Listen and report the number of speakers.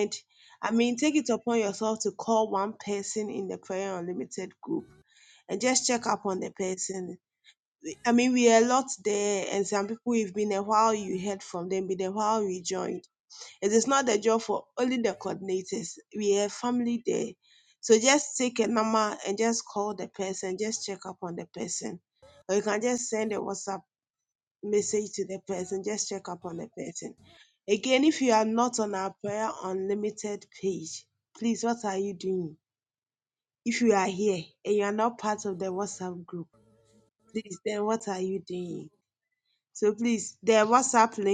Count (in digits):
1